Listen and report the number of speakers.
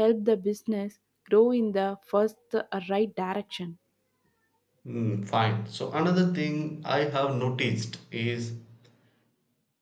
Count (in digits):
2